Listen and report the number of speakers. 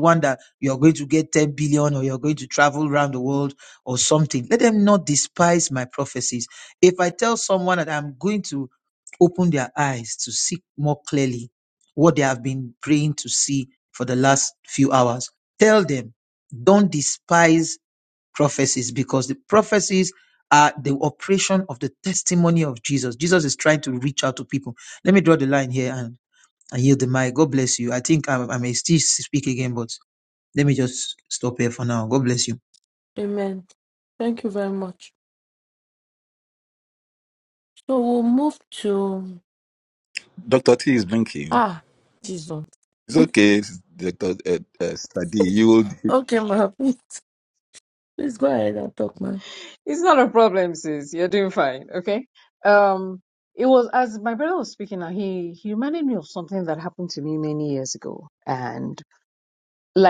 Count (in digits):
4